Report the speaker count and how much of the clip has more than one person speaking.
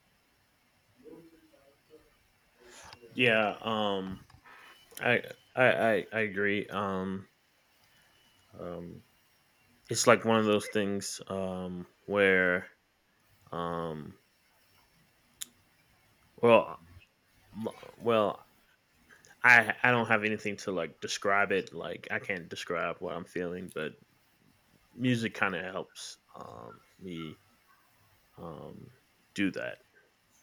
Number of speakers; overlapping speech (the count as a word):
one, no overlap